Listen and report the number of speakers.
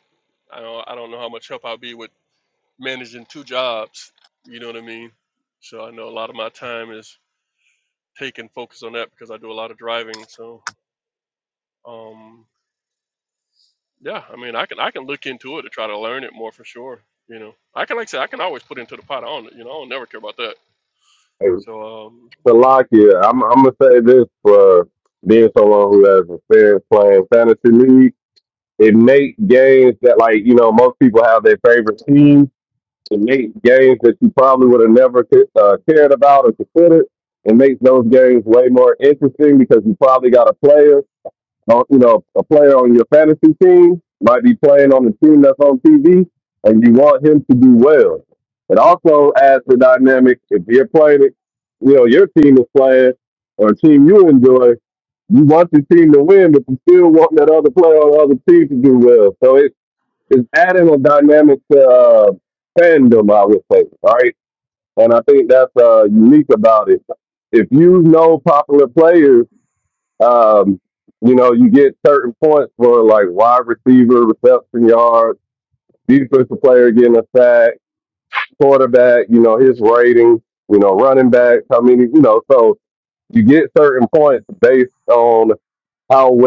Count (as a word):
two